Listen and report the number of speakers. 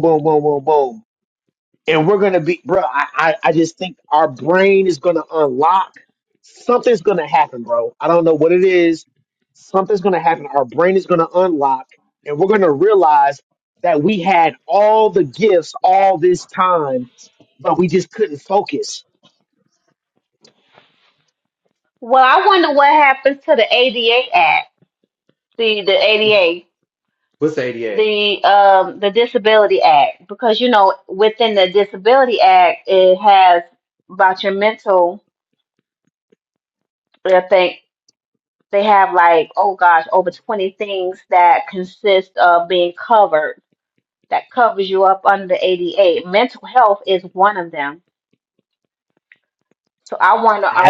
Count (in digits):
3